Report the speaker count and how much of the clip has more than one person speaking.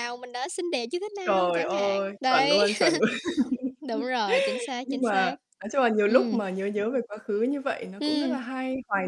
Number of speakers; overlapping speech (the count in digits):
2, about 29%